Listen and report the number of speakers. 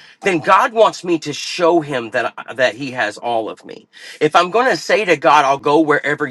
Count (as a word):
one